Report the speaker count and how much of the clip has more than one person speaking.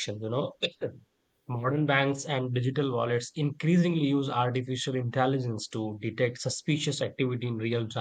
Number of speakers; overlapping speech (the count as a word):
one, no overlap